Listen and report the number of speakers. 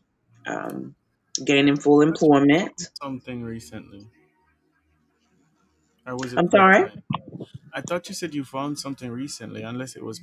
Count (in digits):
2